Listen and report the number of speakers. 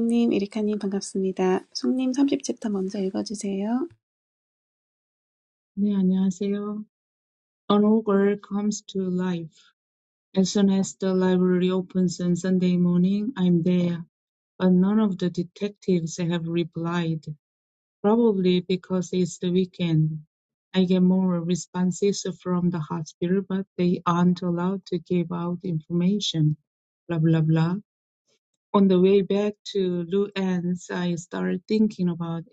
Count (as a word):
two